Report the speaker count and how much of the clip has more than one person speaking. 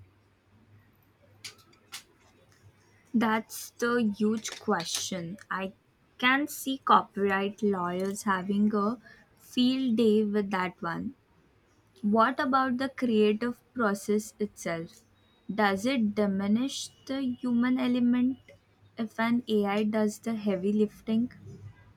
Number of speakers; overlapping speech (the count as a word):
one, no overlap